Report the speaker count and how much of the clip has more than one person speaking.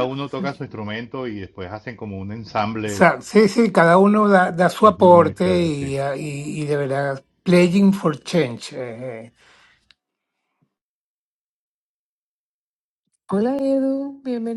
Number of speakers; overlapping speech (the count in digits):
3, about 9%